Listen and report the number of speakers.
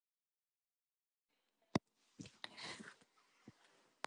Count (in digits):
0